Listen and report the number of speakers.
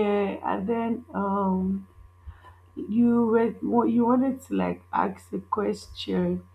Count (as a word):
one